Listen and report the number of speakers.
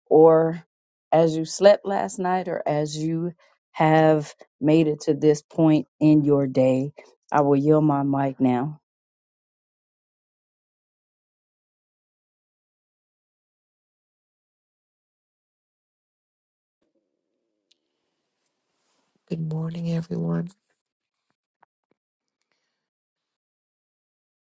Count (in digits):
2